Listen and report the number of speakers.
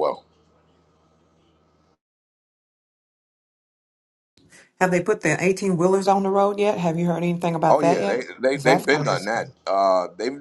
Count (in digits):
2